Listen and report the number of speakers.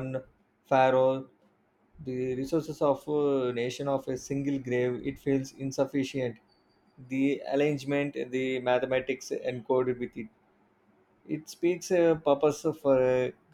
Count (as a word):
one